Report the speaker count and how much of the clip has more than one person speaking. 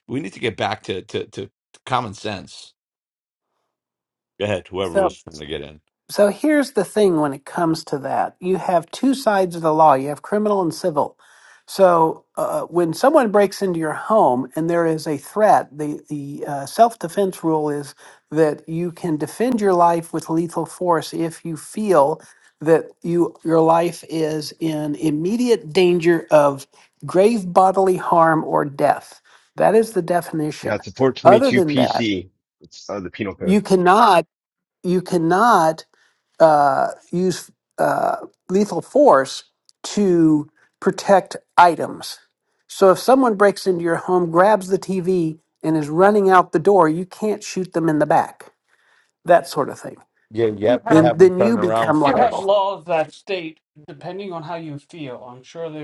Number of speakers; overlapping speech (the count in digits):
4, about 6%